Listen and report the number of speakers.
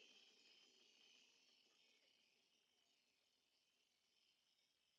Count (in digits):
0